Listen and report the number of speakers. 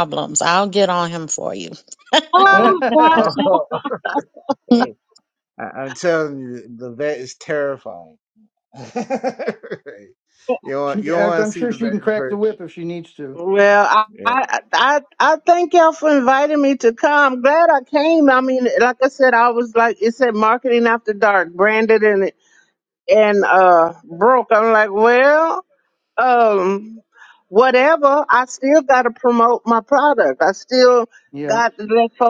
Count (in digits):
4